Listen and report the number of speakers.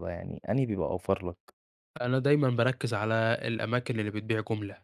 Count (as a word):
two